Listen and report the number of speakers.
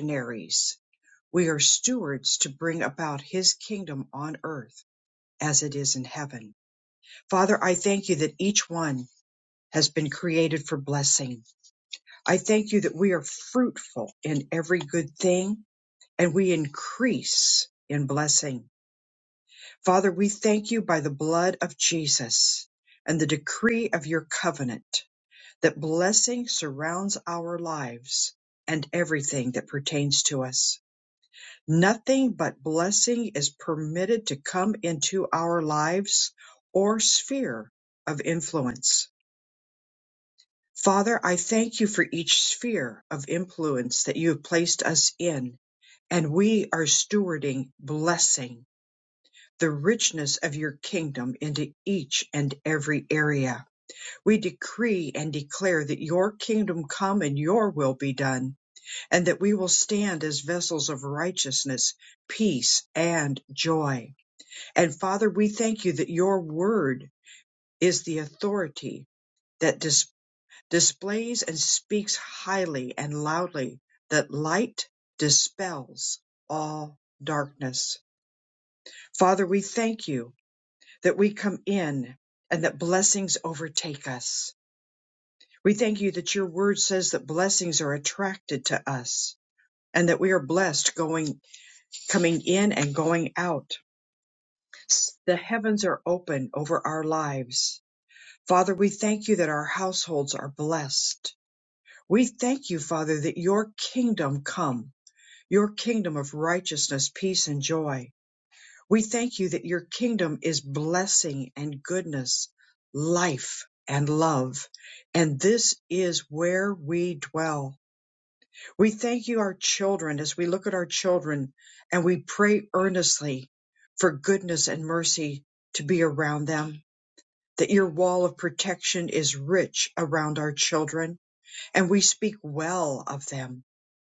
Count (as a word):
one